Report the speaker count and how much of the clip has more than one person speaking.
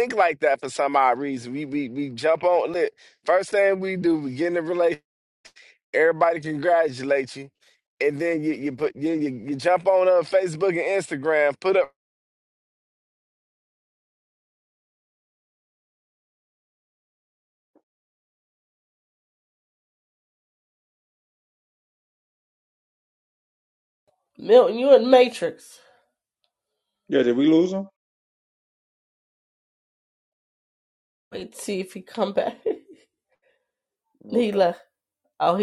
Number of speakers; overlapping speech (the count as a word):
three, about 1%